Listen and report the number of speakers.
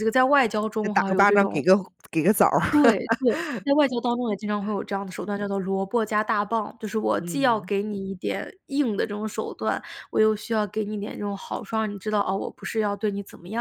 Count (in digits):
2